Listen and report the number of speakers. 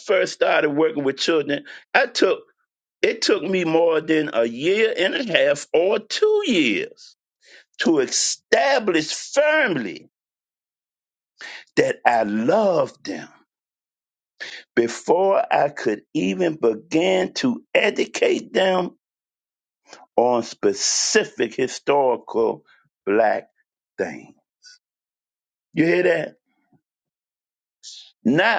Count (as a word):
one